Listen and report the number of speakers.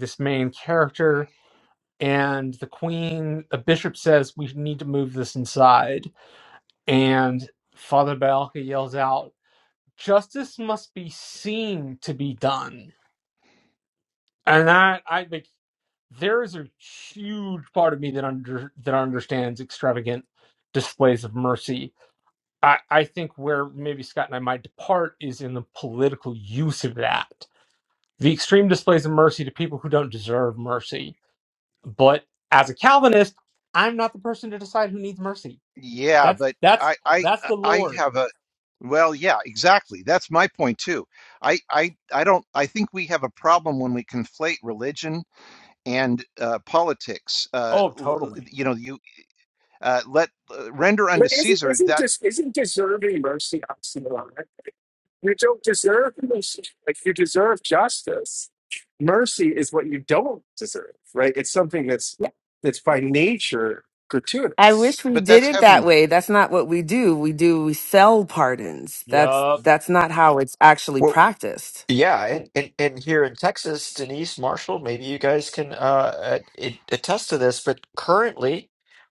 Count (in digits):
5